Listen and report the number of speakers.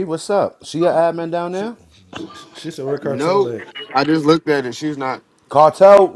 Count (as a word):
three